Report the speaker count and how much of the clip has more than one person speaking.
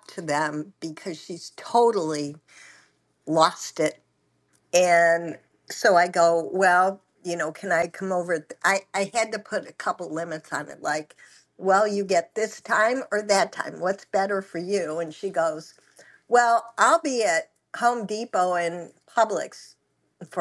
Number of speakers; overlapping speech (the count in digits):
1, no overlap